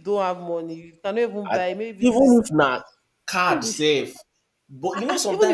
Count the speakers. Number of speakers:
two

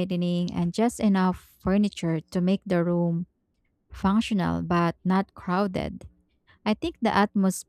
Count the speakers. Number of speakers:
one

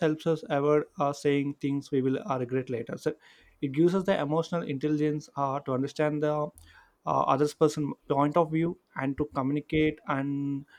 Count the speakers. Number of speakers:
one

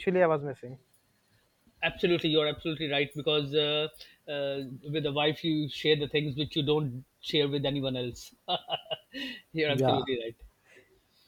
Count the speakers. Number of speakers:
two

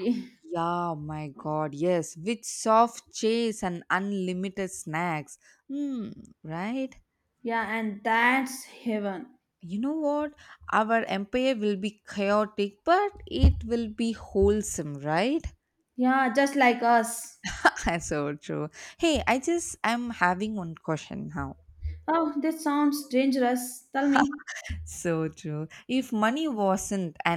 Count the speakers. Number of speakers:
two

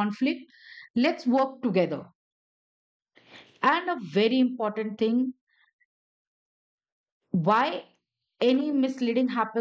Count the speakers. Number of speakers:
one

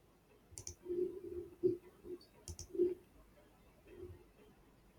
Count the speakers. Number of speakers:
zero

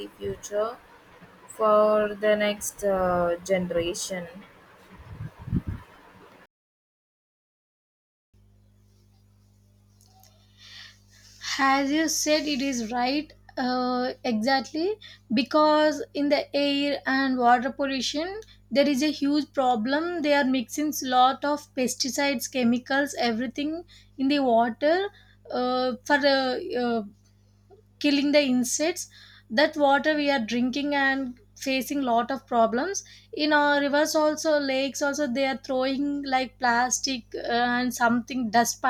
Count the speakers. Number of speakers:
two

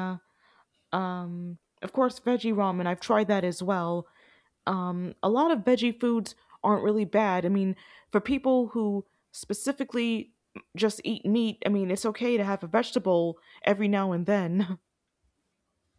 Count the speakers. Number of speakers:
one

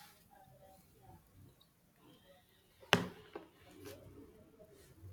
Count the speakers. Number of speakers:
zero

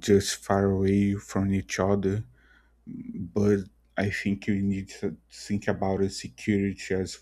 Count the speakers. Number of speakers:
one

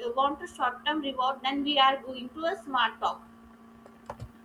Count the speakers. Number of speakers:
one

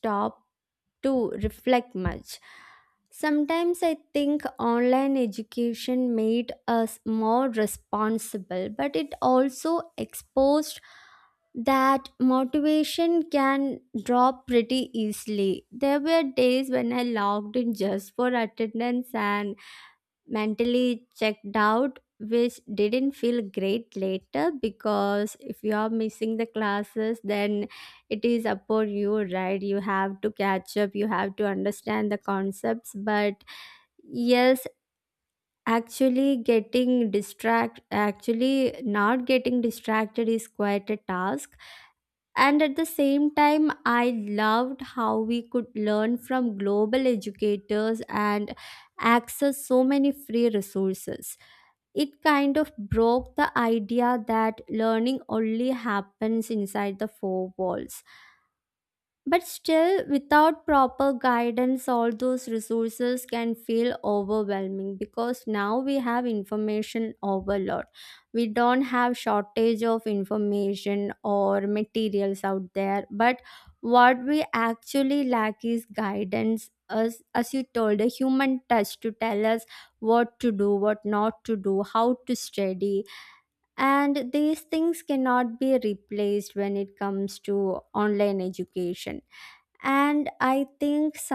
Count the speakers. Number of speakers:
one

